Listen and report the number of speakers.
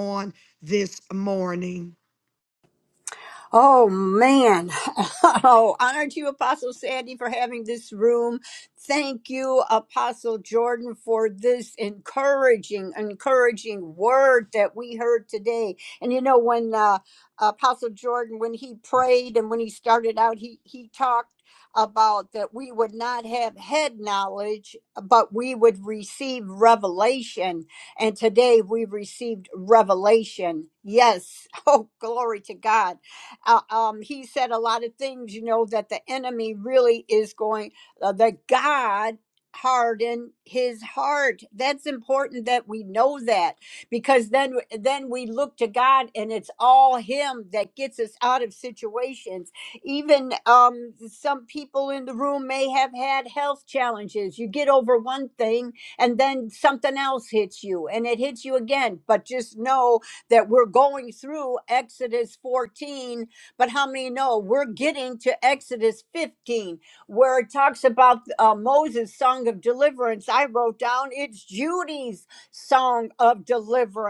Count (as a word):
two